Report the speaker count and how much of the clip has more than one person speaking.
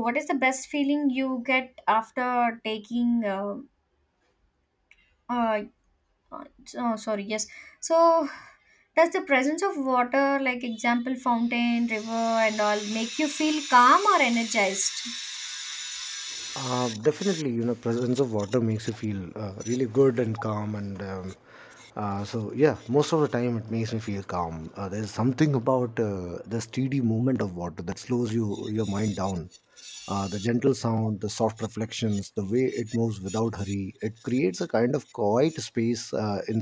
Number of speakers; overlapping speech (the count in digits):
2, no overlap